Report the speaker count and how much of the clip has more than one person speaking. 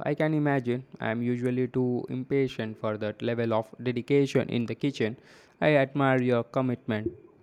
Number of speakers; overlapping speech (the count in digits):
1, no overlap